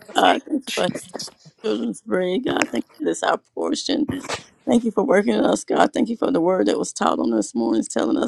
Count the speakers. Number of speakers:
one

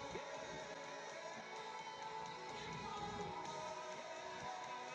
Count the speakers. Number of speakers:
zero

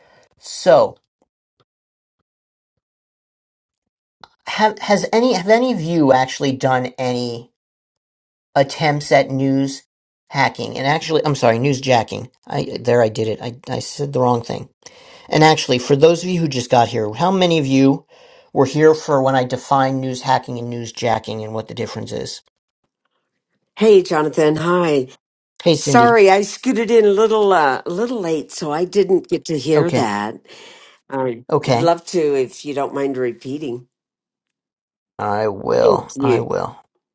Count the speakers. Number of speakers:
two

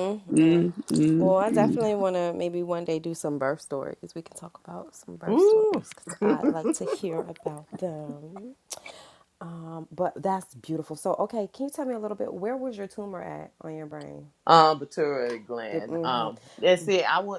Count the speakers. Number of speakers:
three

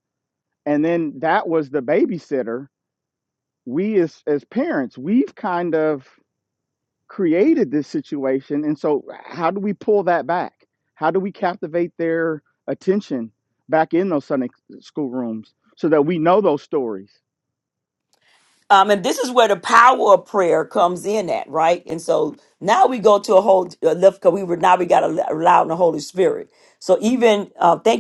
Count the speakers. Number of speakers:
two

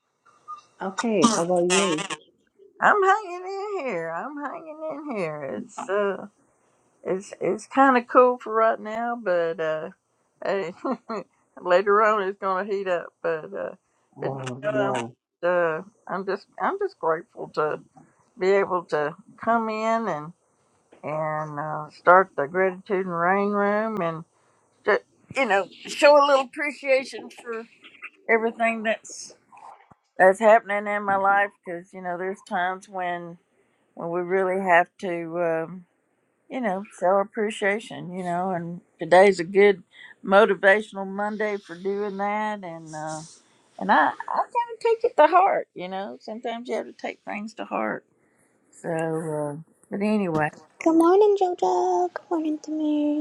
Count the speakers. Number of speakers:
three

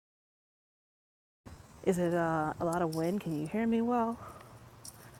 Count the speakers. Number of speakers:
one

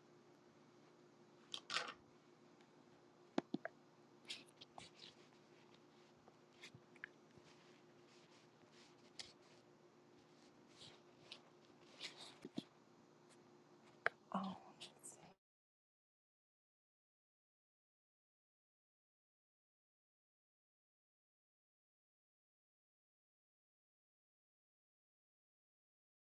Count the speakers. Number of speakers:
zero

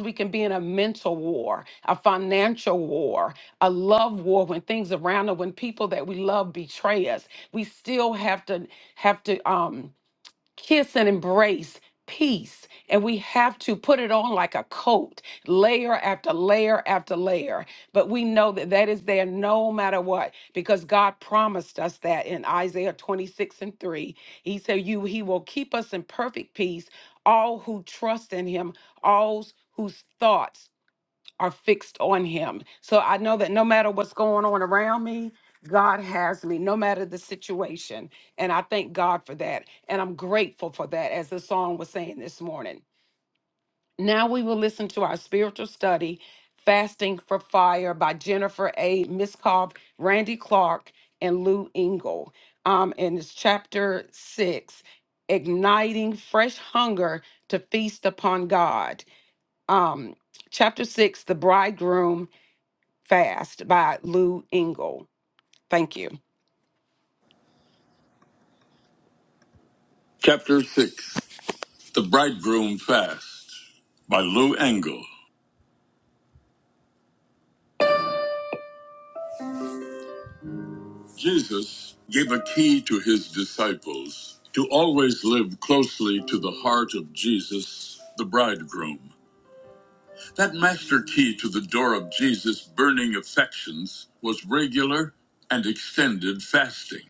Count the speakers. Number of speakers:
two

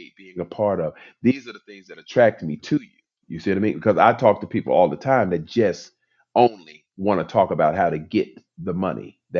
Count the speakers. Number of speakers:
one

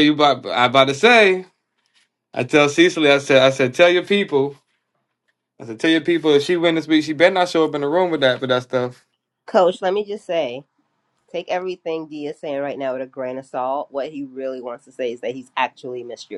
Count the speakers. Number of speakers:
two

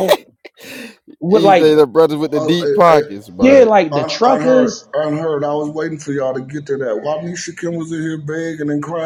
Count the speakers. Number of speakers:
three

